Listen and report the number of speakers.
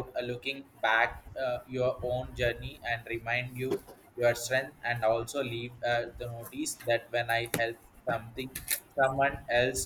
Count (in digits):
1